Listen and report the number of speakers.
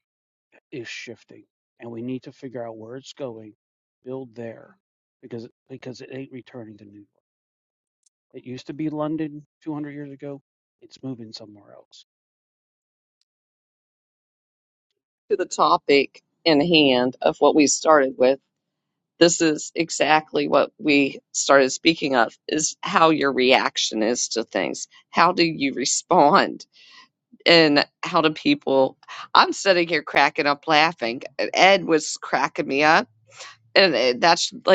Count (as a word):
two